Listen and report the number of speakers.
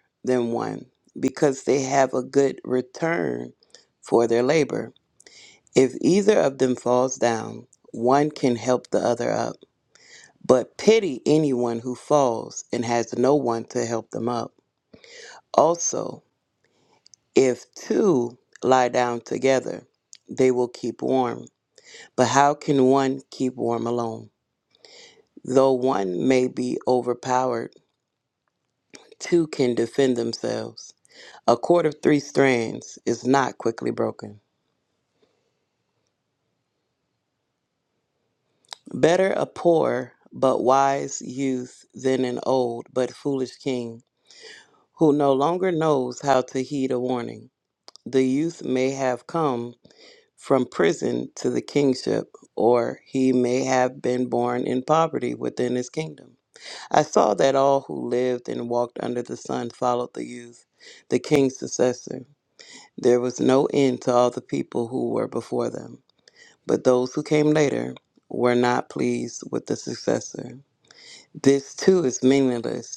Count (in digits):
1